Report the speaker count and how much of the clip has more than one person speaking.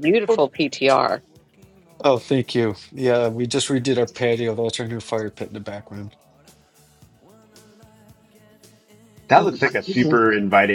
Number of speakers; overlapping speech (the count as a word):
three, about 9%